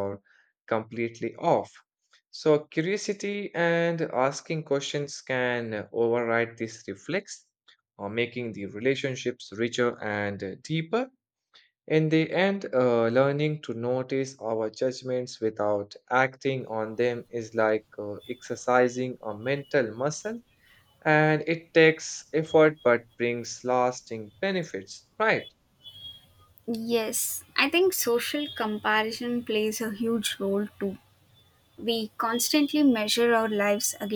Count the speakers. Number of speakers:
2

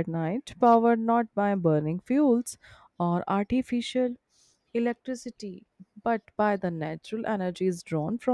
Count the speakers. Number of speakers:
1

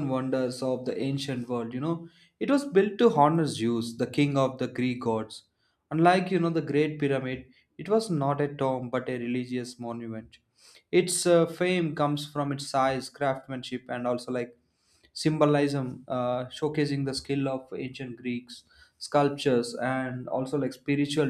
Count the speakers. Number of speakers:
1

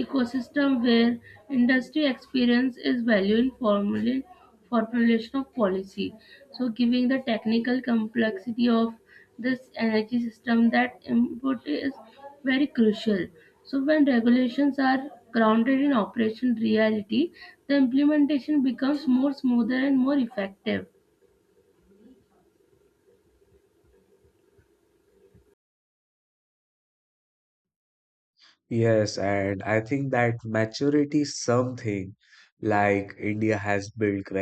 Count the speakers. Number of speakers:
2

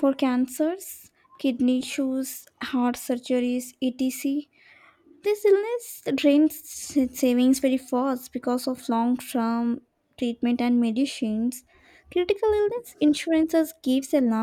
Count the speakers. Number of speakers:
1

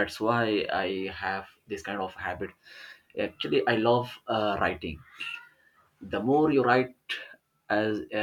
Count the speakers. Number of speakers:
1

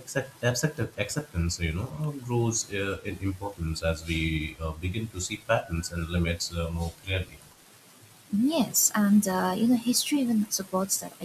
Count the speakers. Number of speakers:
2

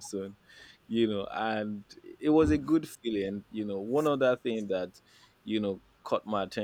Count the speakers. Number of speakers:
1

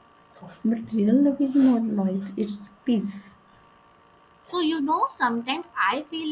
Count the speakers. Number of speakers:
2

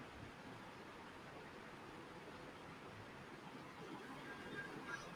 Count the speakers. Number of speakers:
0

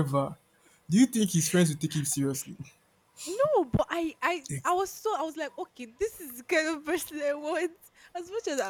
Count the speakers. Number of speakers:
2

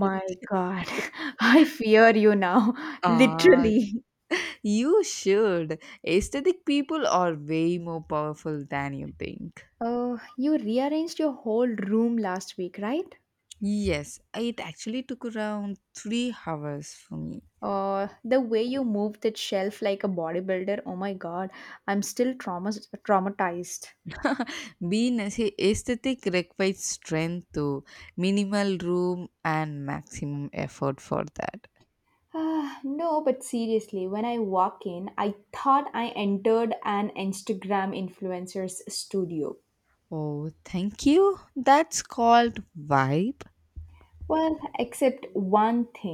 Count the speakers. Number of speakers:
2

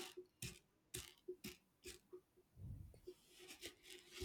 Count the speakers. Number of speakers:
0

